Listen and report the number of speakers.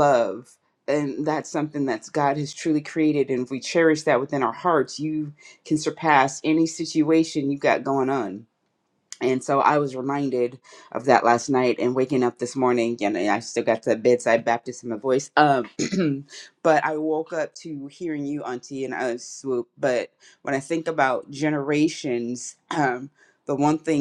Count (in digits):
1